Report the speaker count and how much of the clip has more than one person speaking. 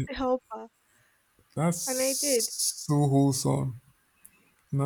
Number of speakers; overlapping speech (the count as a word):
two, no overlap